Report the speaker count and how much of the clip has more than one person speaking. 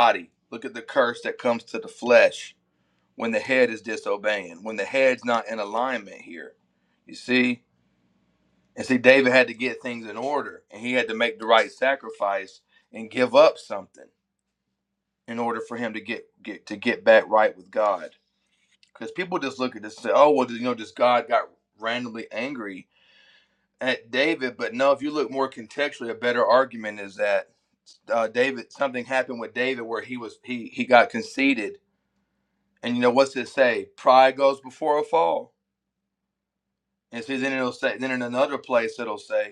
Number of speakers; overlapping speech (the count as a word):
one, no overlap